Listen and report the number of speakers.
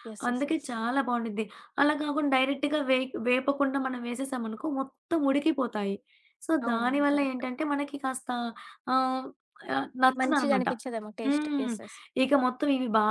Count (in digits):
2